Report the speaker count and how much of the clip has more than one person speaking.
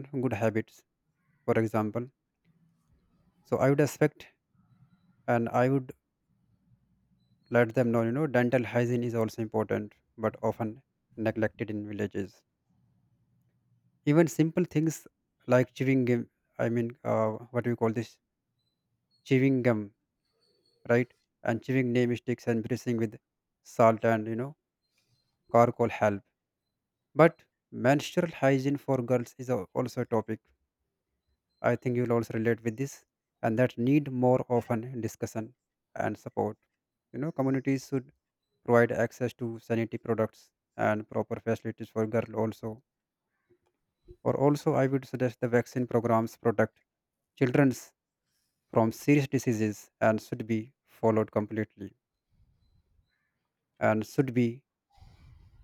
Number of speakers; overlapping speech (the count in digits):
1, no overlap